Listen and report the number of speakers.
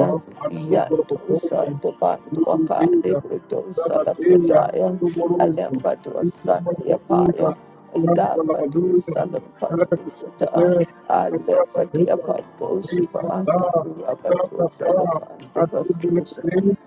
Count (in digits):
2